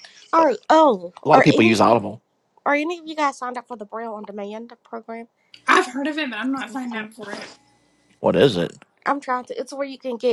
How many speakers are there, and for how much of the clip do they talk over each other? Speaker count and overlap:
three, about 9%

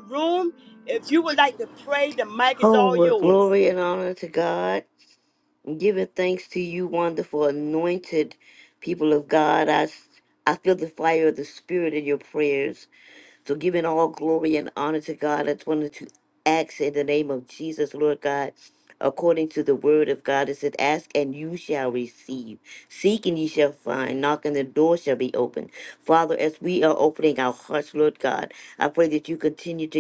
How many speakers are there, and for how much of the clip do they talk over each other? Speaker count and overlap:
two, about 3%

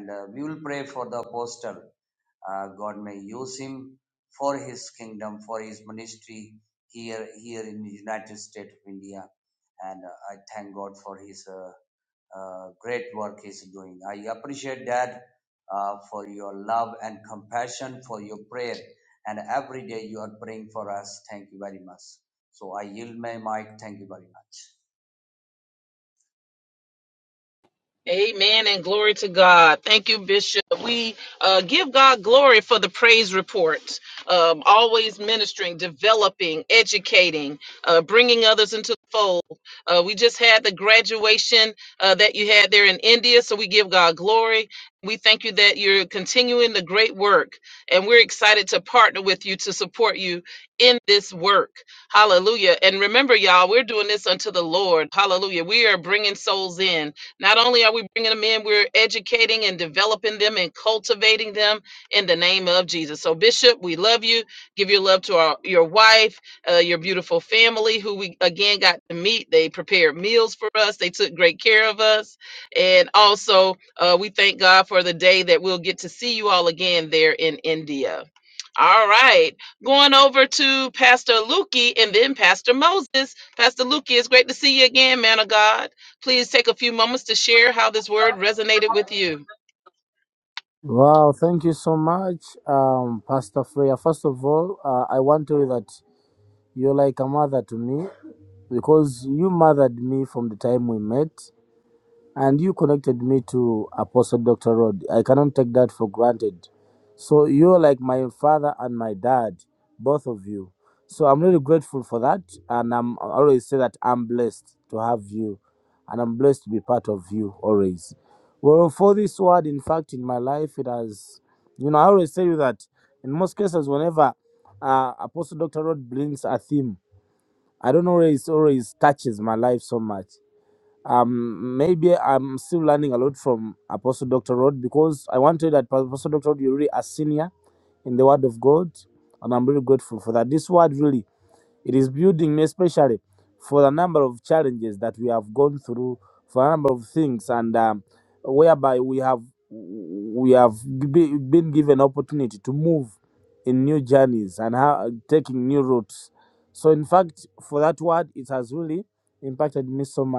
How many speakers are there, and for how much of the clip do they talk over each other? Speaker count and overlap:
three, no overlap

